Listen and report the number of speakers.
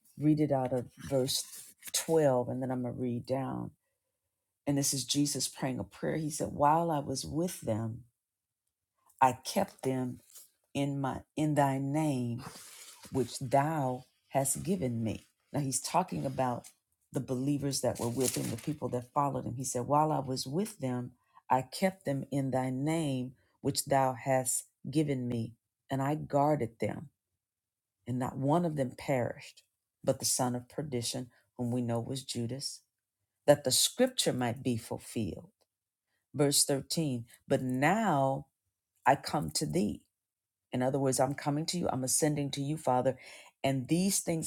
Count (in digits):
1